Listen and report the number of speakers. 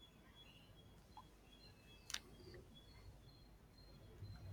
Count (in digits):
0